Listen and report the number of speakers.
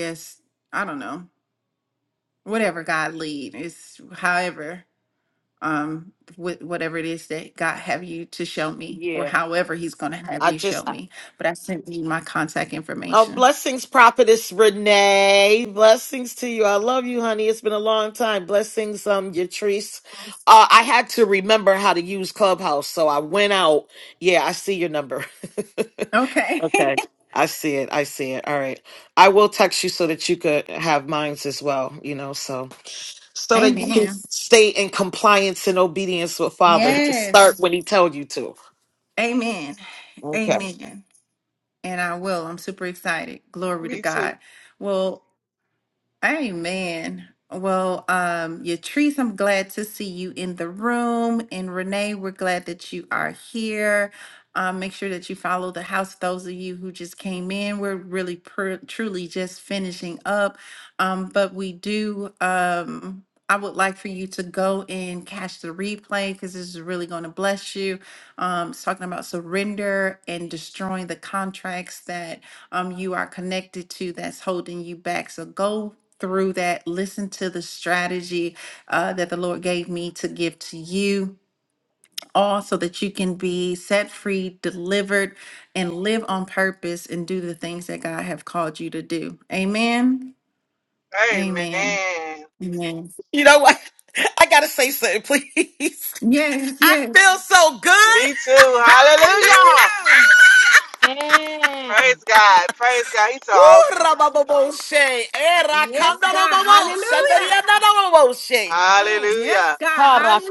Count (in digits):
4